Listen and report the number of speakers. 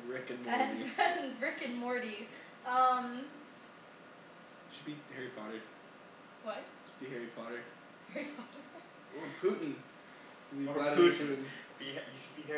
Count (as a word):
three